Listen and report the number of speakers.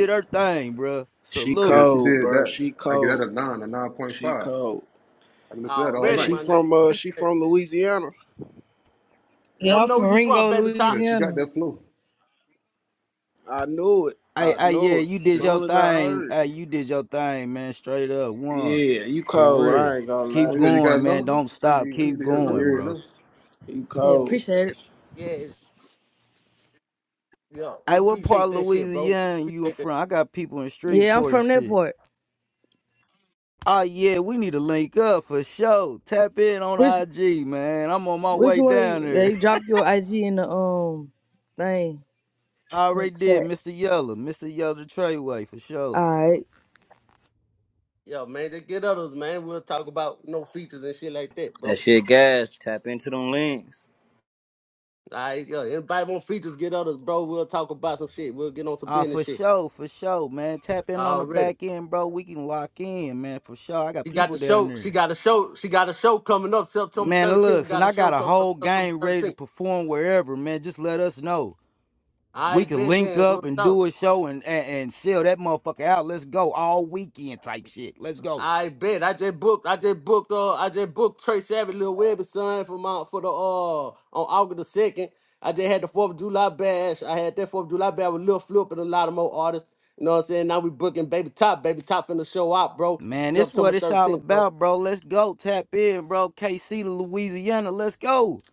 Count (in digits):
6